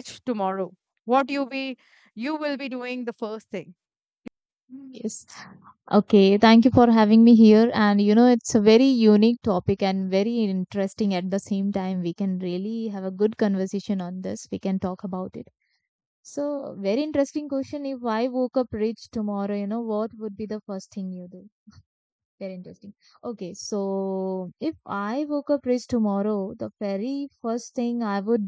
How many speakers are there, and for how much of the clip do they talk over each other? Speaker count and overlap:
two, no overlap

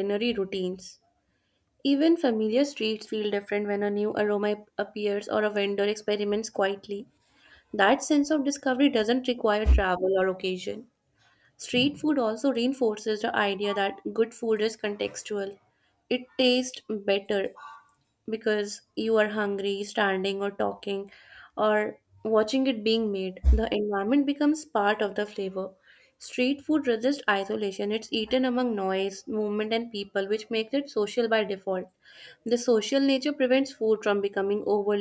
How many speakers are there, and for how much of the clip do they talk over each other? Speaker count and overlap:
one, no overlap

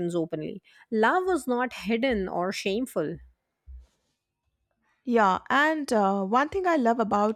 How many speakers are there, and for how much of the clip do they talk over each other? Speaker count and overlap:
two, no overlap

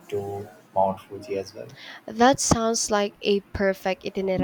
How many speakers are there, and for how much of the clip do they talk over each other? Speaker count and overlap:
two, no overlap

